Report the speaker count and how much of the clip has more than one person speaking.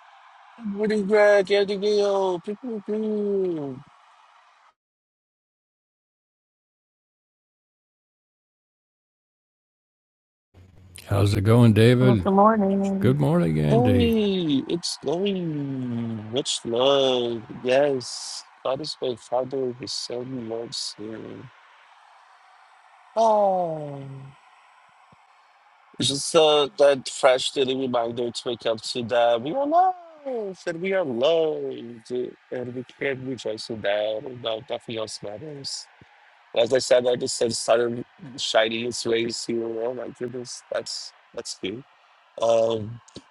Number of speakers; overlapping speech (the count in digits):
3, about 2%